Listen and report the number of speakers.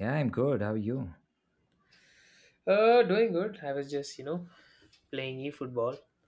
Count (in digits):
2